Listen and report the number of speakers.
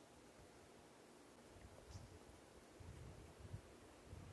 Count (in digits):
0